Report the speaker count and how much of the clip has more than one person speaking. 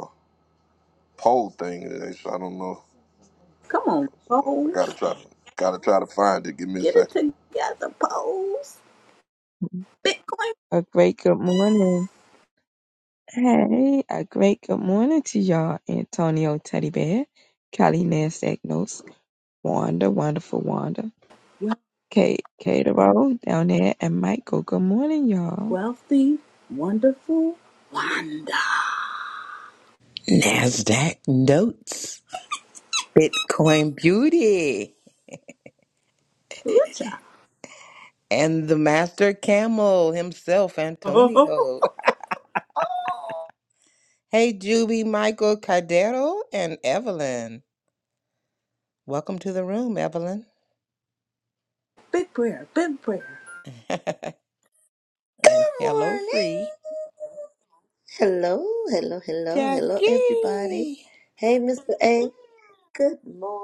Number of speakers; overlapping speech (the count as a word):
five, about 5%